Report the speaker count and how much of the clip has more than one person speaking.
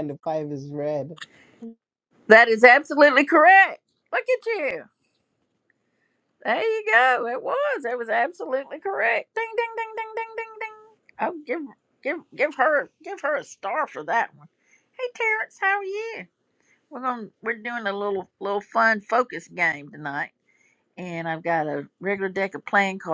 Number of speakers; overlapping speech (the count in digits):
2, no overlap